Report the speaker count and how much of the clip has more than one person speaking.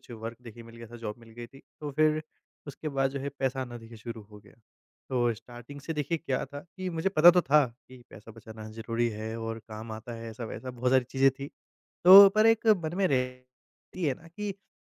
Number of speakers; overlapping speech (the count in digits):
1, no overlap